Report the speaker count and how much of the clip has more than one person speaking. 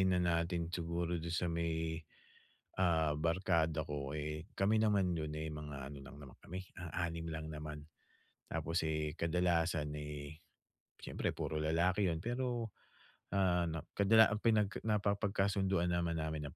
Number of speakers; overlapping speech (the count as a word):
one, no overlap